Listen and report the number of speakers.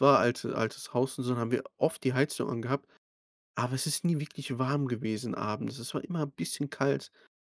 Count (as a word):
one